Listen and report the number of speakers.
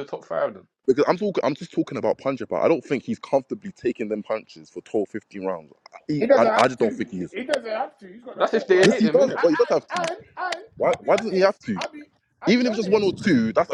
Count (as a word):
three